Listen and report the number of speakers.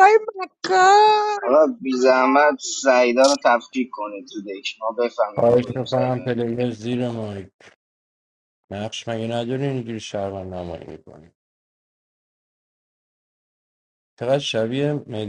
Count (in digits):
3